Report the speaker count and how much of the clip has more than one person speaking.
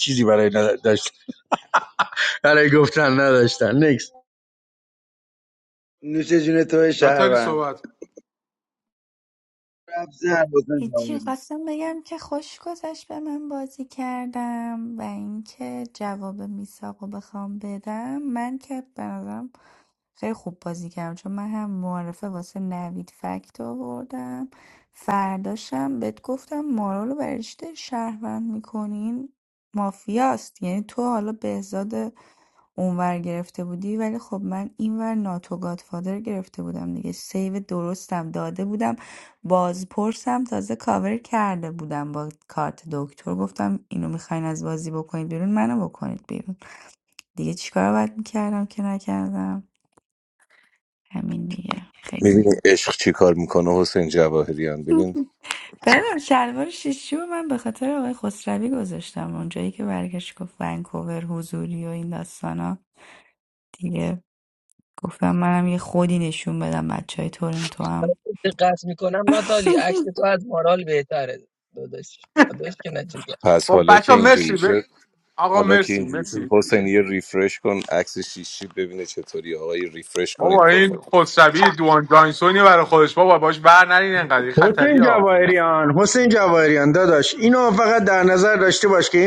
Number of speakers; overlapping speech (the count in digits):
6, about 5%